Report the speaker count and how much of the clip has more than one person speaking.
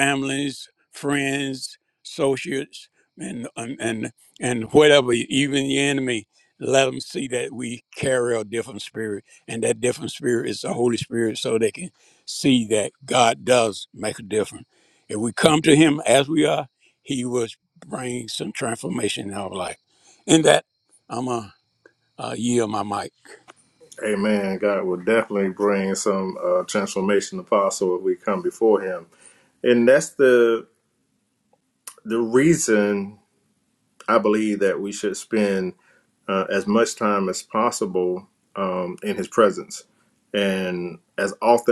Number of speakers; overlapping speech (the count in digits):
2, no overlap